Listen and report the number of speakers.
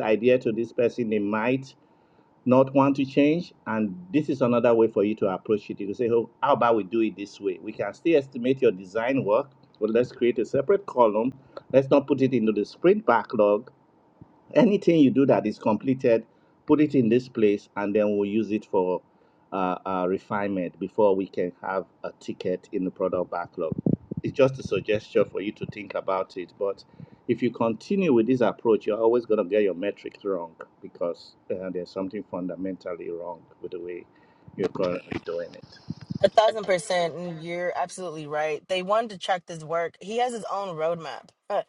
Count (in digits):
2